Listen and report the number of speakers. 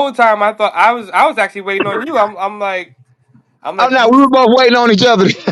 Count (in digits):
2